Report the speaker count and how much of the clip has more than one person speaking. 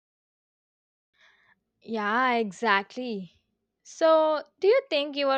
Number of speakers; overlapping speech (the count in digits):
1, no overlap